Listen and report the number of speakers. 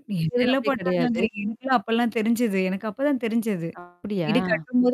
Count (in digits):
2